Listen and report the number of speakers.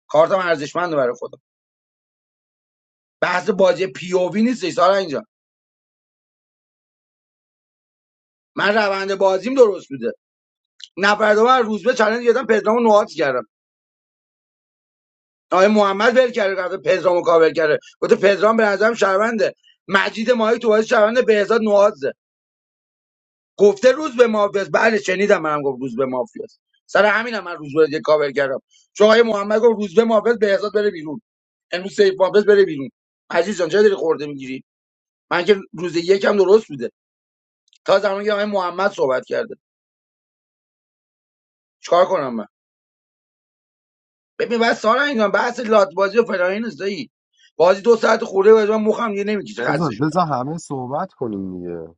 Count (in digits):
2